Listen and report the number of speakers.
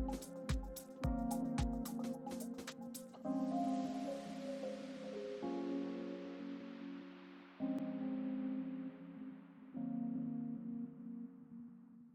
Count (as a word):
zero